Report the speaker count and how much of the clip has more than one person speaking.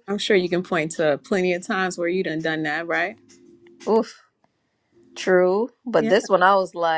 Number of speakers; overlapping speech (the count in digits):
2, about 2%